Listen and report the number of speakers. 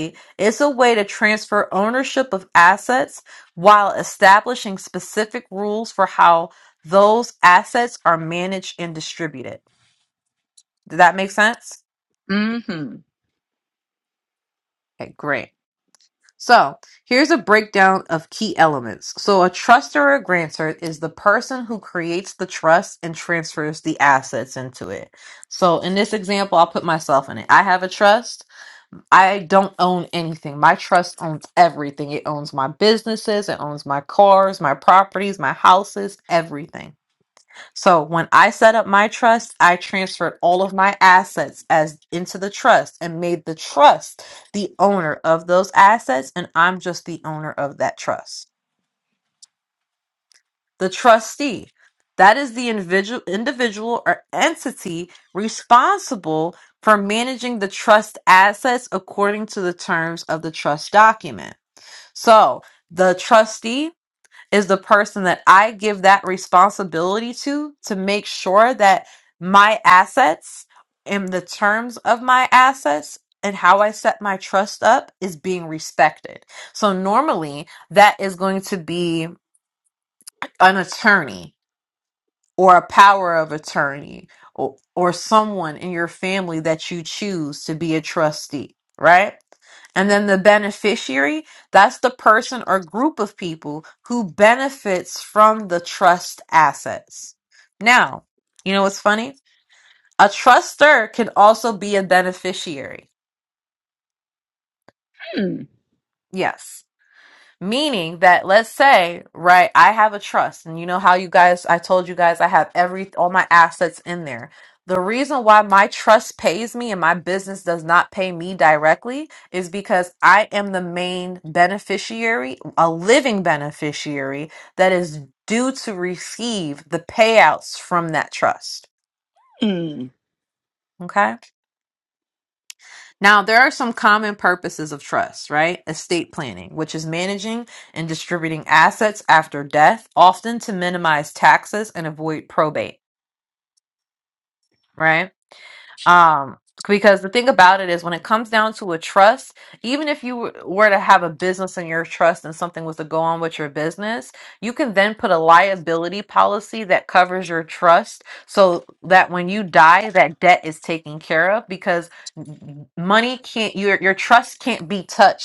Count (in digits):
2